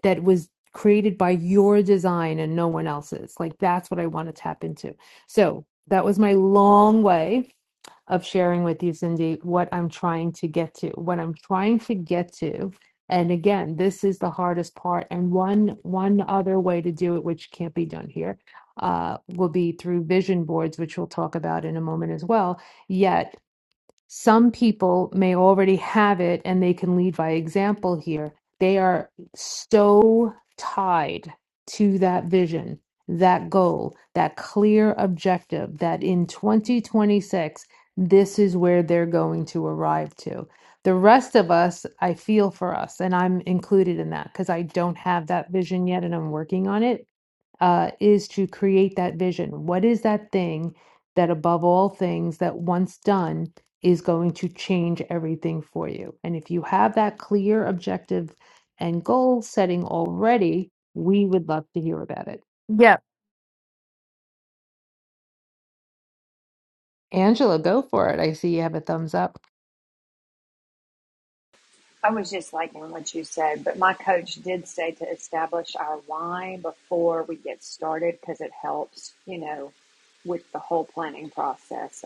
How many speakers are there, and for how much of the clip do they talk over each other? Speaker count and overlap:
2, no overlap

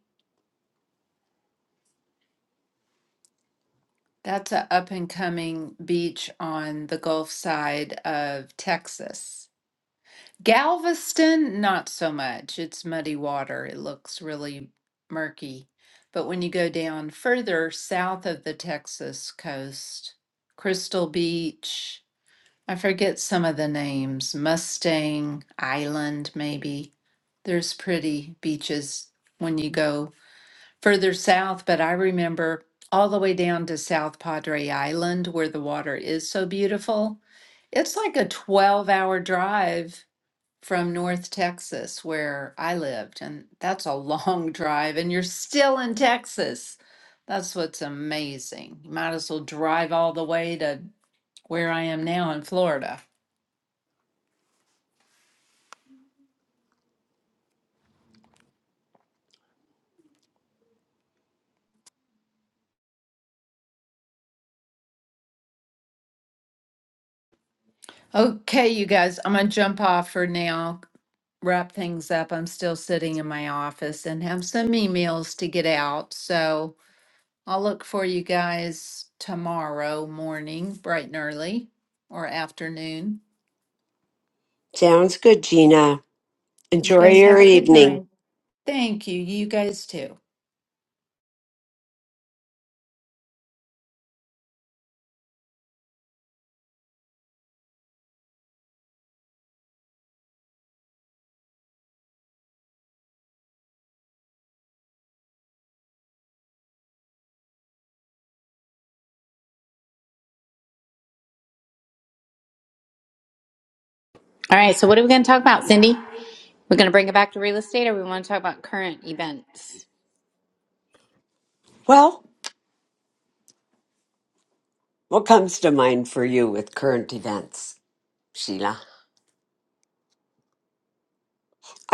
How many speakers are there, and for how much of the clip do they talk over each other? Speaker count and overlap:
3, about 1%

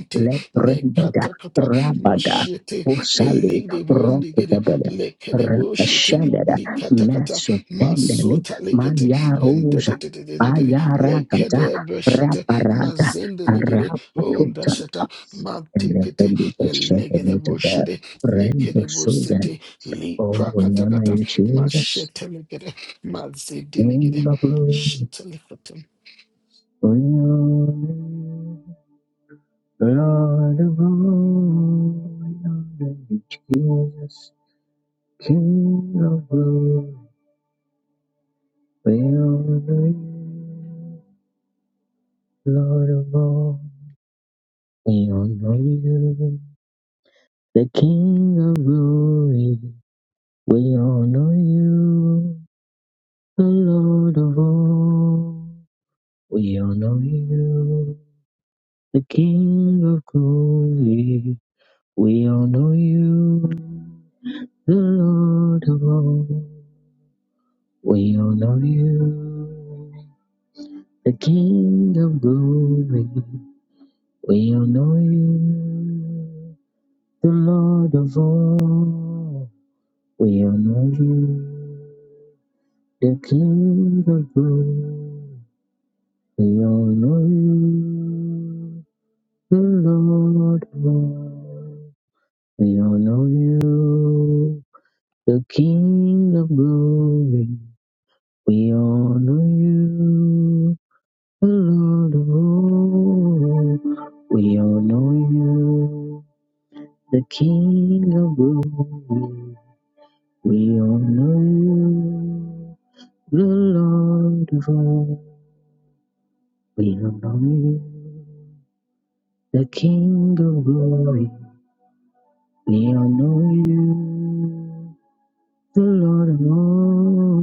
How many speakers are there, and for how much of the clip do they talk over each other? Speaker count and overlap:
2, about 9%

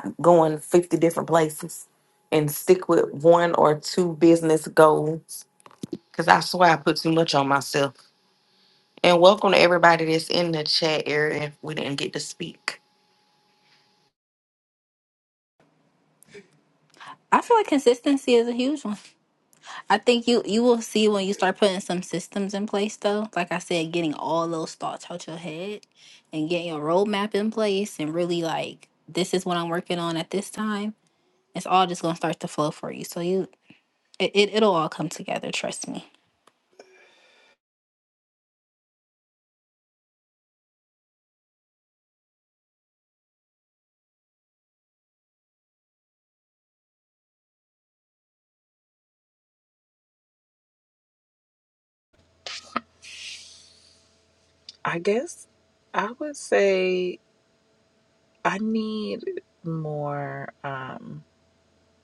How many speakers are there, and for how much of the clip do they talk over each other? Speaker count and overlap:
3, no overlap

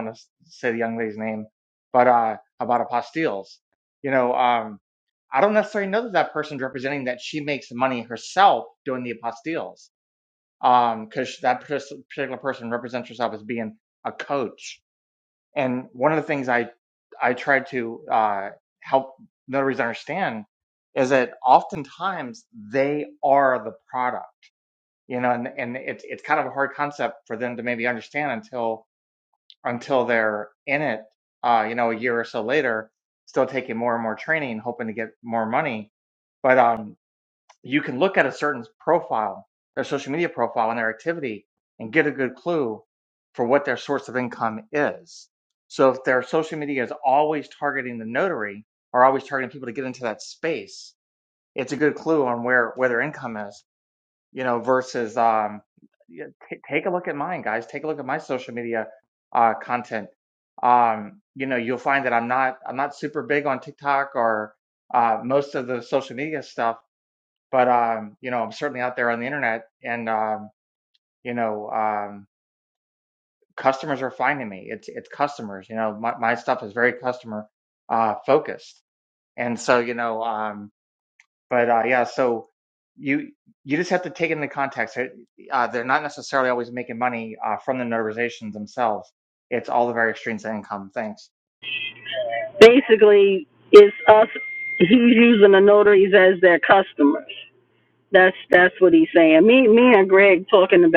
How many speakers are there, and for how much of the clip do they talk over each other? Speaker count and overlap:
2, no overlap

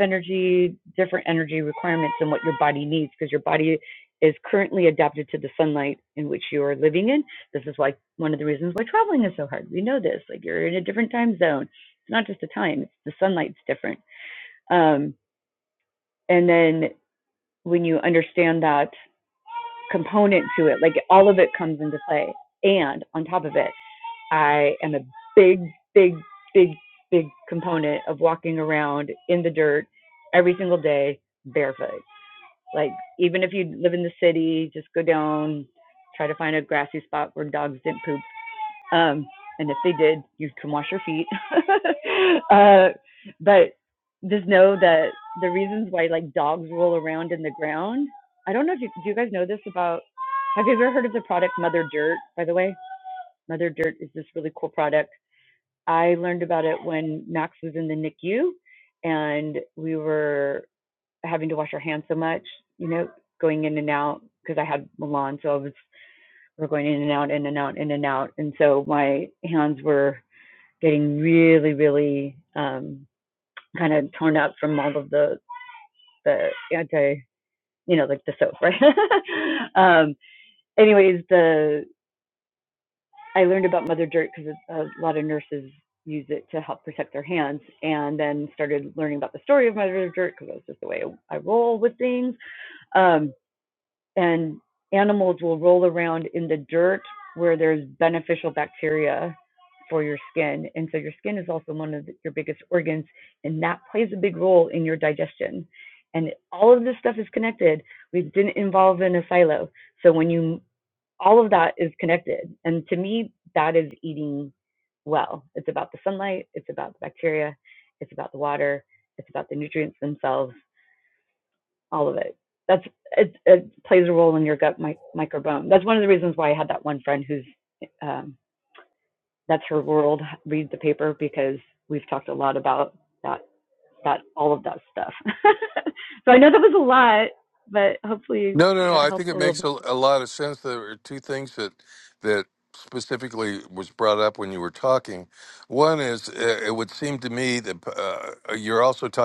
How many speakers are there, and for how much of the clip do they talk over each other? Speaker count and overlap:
2, about 1%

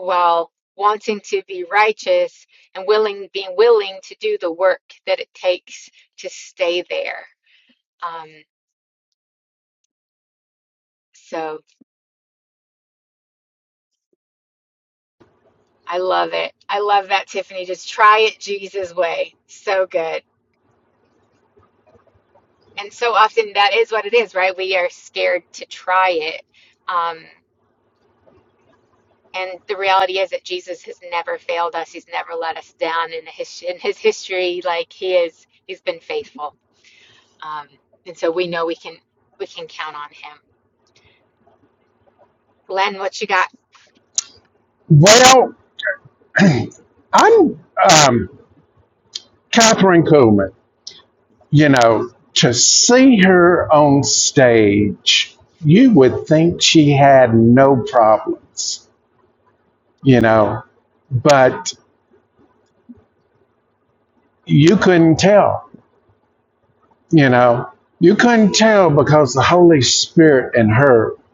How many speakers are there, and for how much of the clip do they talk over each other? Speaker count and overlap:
2, no overlap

